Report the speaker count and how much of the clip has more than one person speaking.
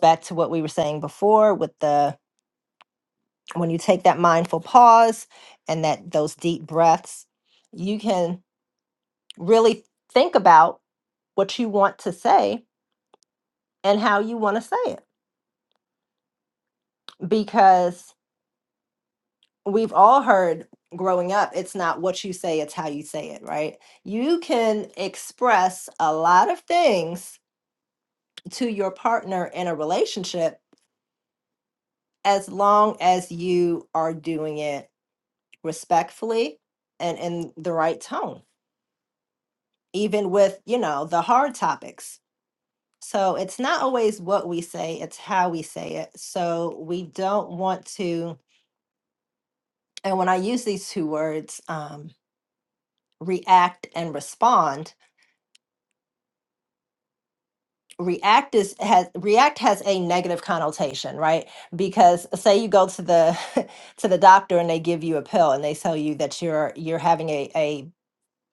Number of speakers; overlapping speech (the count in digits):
1, no overlap